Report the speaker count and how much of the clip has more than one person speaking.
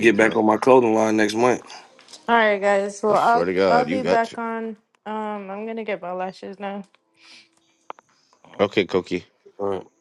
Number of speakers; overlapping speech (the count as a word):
three, about 17%